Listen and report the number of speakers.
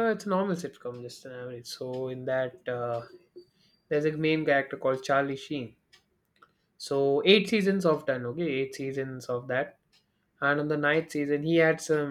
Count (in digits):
1